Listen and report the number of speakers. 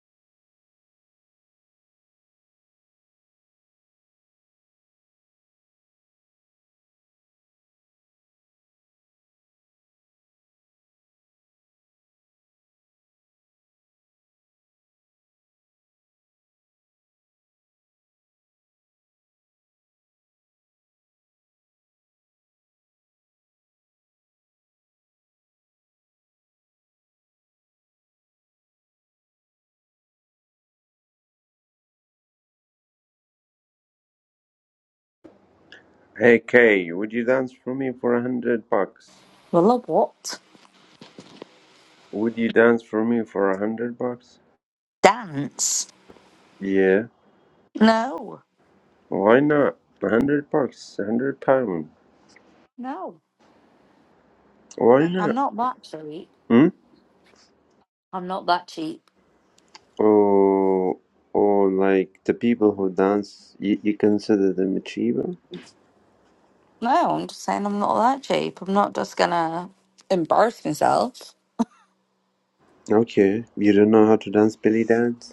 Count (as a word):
two